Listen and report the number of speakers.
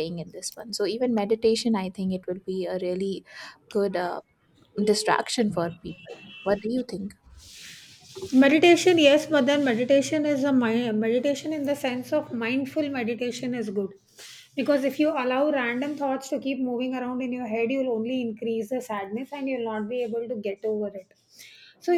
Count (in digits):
2